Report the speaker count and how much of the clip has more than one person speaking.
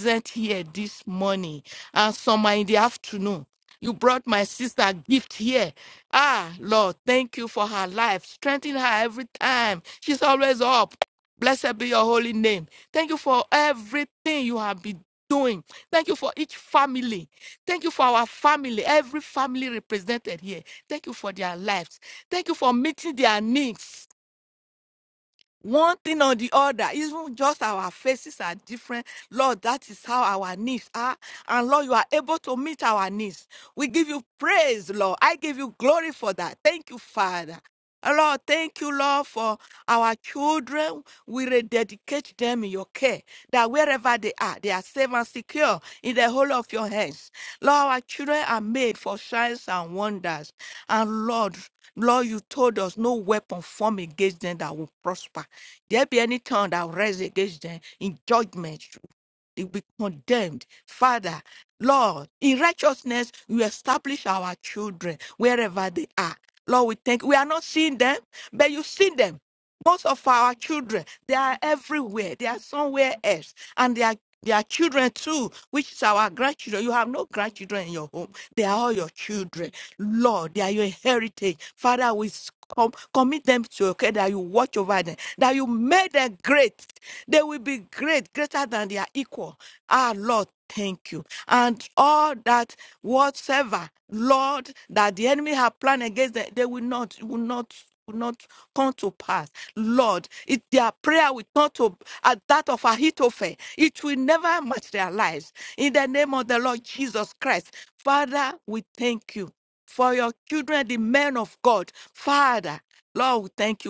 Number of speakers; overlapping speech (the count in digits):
1, no overlap